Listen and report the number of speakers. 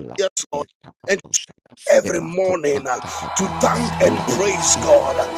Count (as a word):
two